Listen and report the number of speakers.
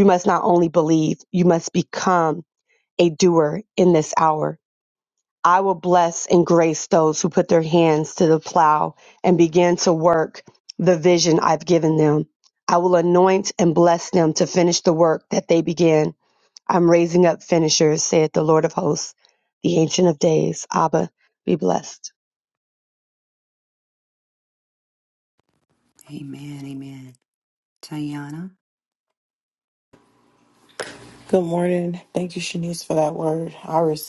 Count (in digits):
3